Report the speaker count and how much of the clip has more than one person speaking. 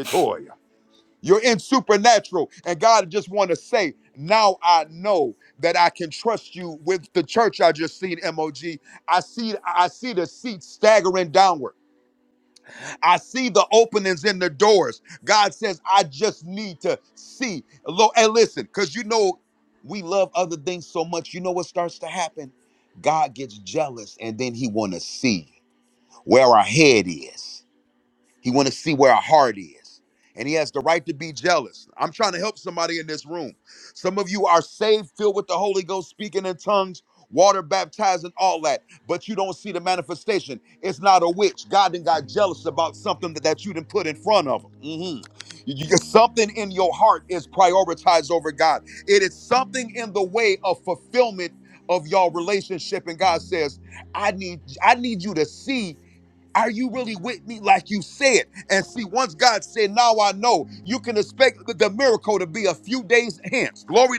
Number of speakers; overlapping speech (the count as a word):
one, no overlap